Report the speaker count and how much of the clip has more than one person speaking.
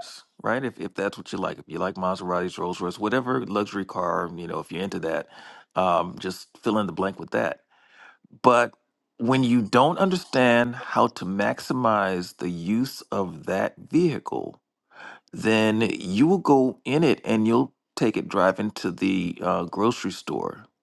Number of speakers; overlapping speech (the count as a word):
one, no overlap